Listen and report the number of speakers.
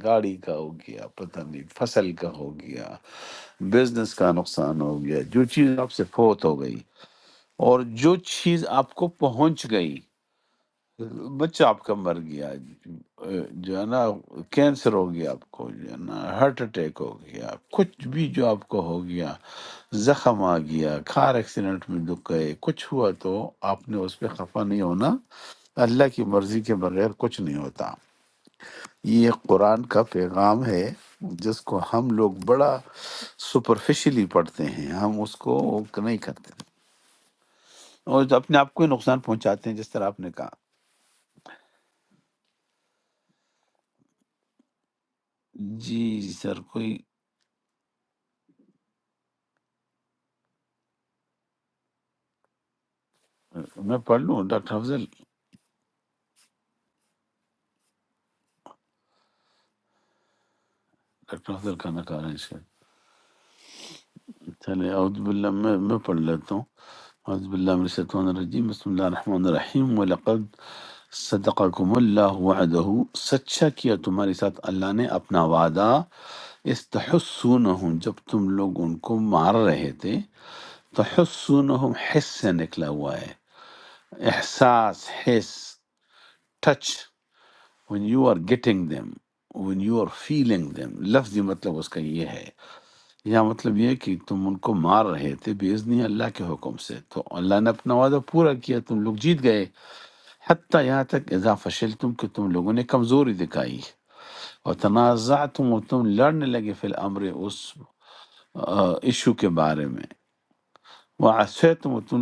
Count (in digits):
1